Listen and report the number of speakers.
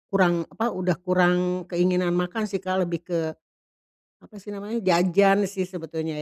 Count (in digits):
1